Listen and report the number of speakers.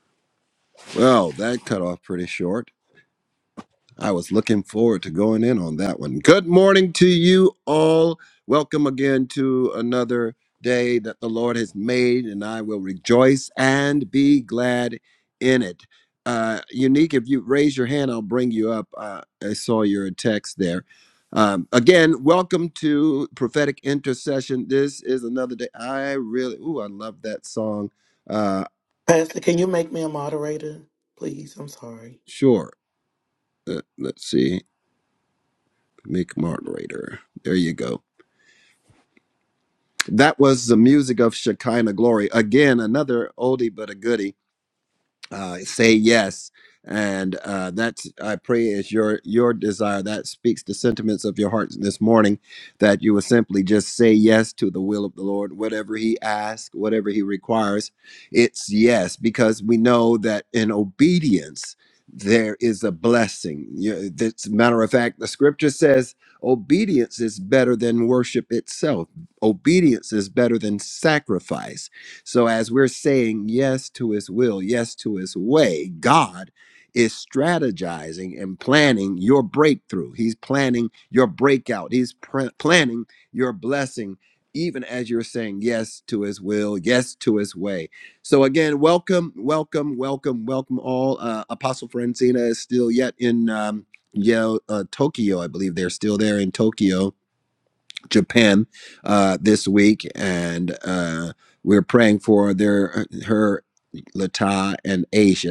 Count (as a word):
two